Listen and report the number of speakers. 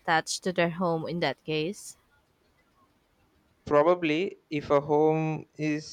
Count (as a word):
two